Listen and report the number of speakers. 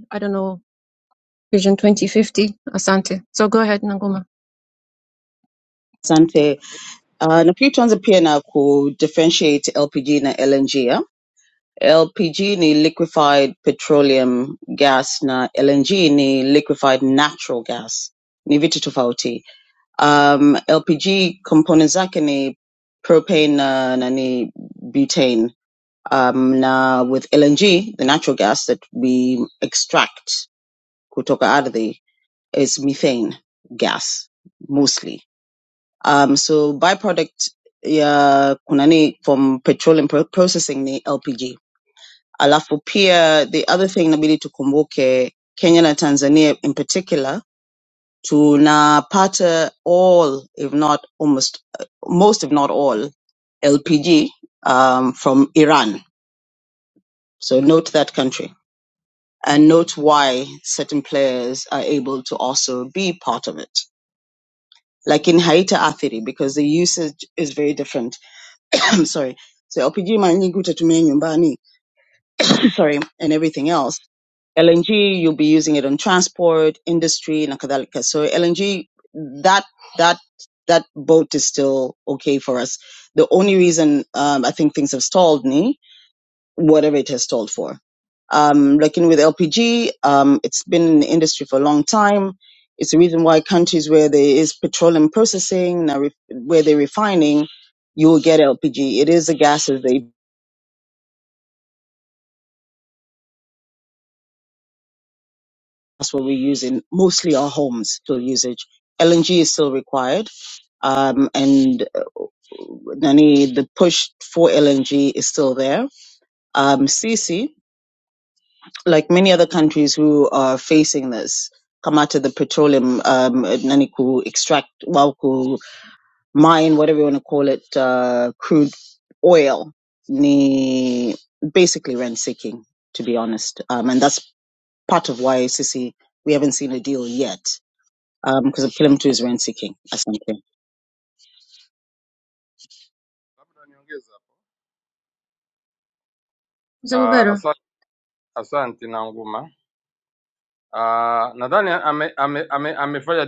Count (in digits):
3